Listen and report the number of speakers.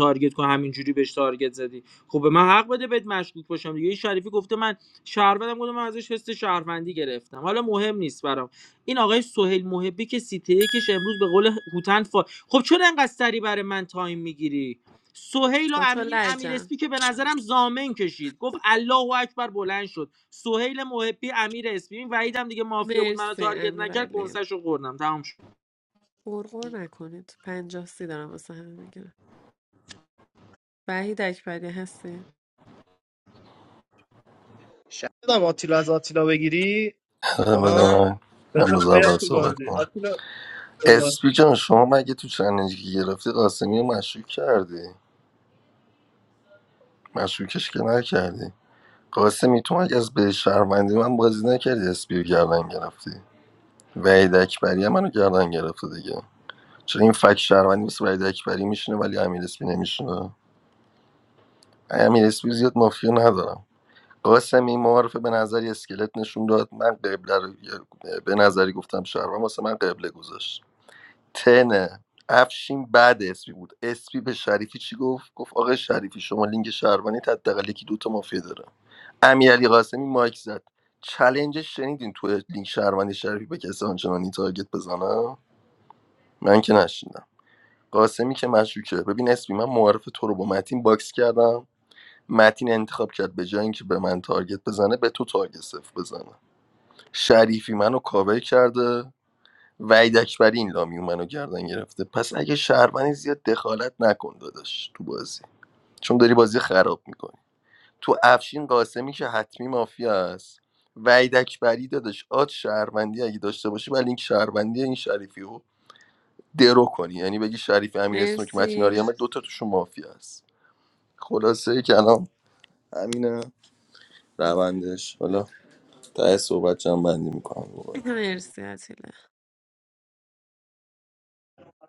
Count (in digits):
4